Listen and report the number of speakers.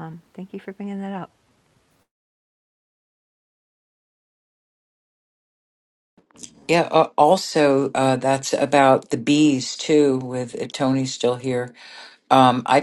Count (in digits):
2